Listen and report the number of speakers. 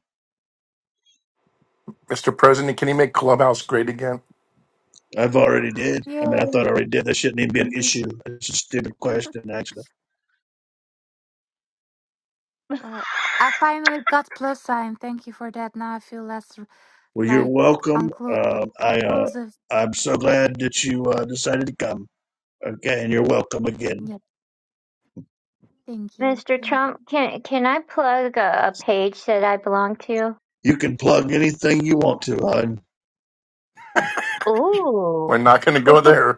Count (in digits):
4